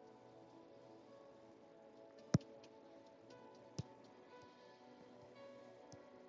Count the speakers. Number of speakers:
0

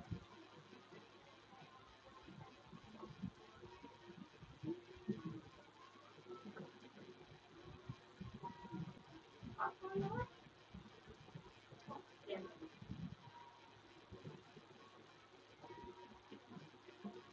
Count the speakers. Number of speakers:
0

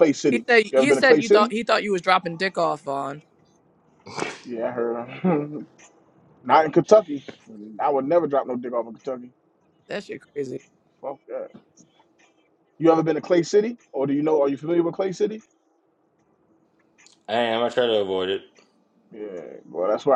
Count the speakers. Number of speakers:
3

